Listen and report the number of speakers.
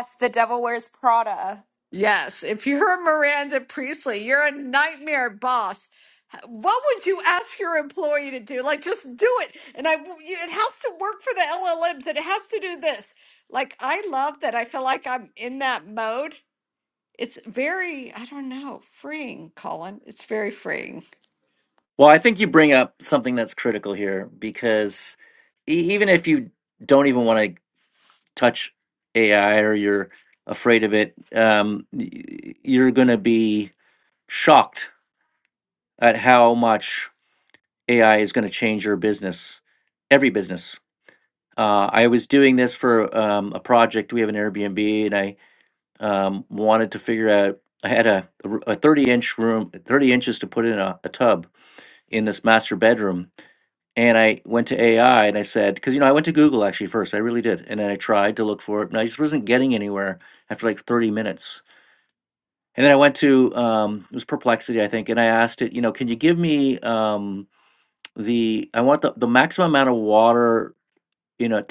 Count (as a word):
three